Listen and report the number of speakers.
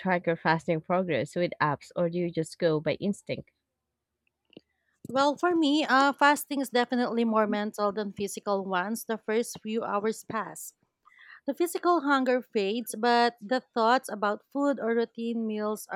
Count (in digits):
2